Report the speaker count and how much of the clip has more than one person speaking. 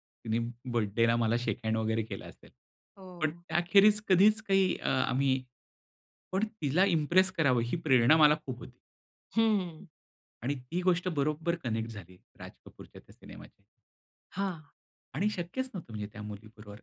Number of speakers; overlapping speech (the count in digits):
2, about 1%